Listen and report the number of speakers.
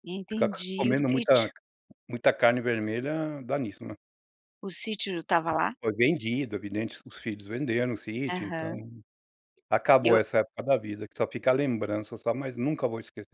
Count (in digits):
2